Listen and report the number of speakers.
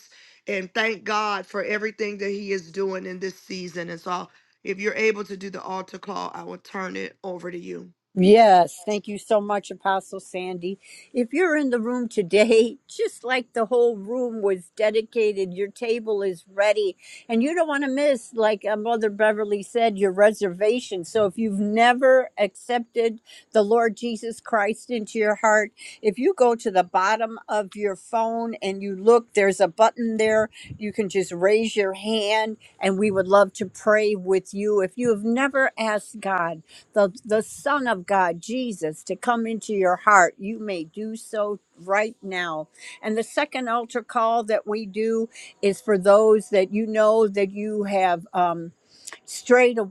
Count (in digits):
2